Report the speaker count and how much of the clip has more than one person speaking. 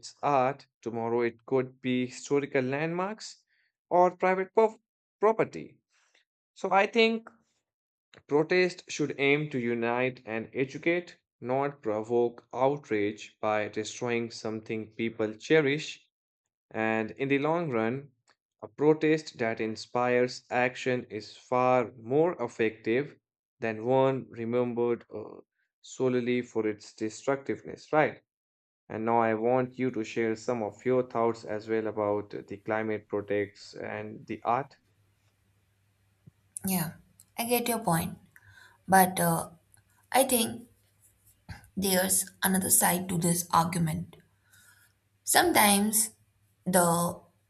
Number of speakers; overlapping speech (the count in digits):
2, no overlap